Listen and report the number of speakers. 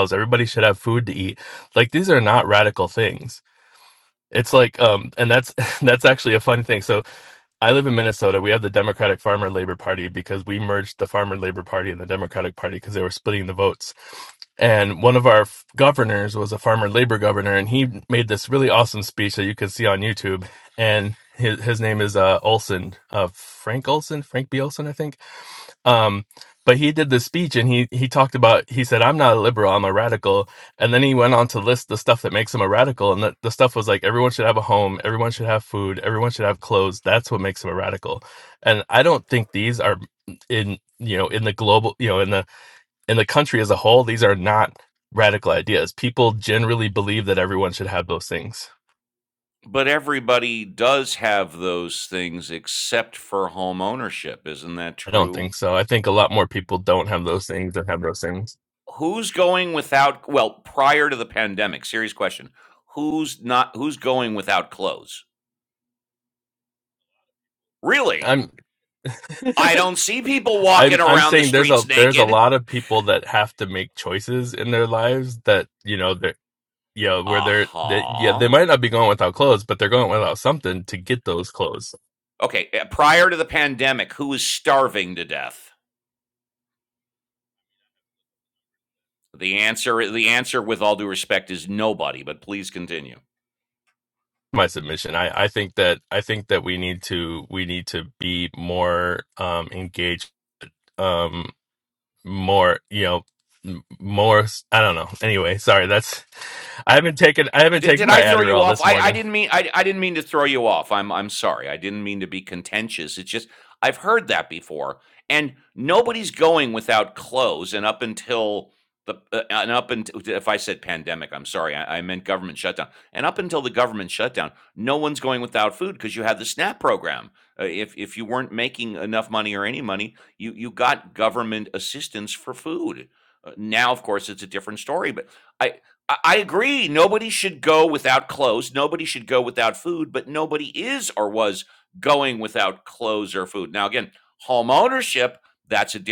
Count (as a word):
two